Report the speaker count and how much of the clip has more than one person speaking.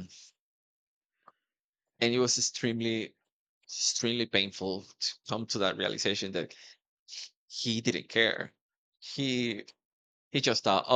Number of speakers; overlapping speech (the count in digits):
1, no overlap